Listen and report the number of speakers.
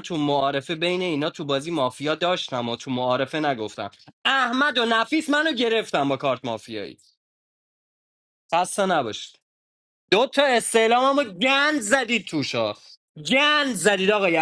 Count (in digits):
1